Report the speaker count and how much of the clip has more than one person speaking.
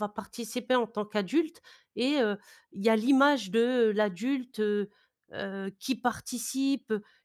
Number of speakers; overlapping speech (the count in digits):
1, no overlap